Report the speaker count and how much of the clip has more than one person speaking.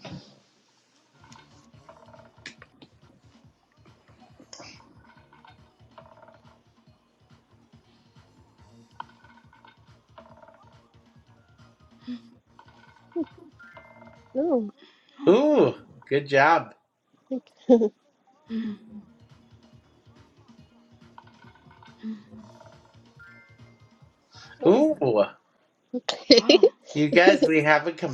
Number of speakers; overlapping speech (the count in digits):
3, about 4%